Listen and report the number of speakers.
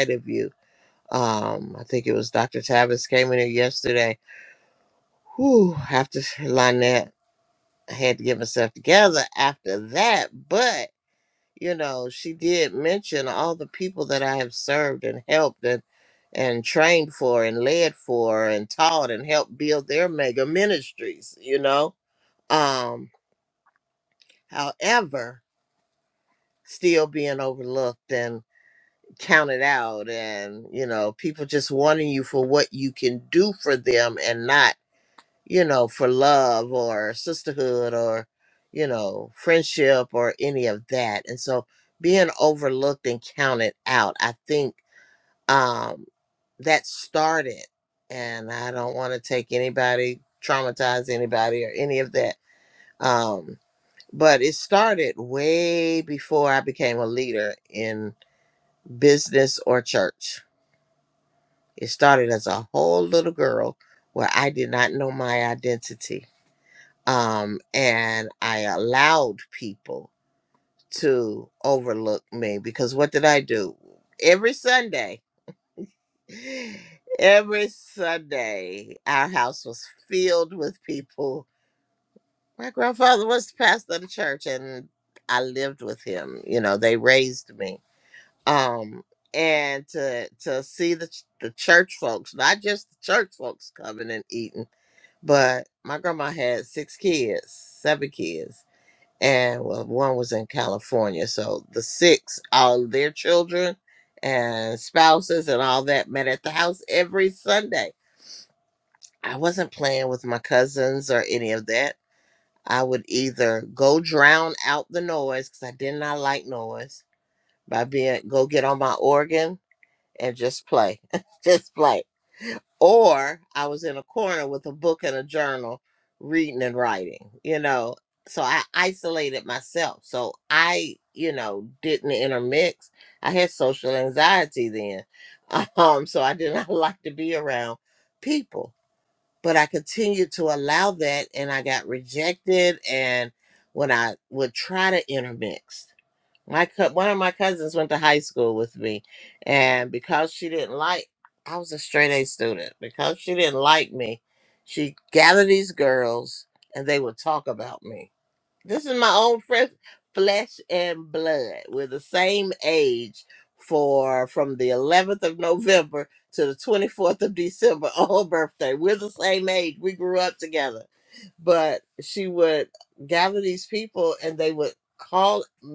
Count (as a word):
one